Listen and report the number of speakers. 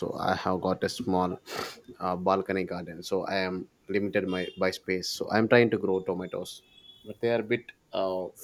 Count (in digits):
1